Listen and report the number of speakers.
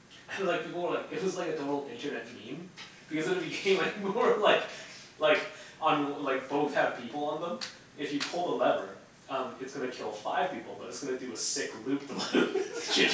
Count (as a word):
one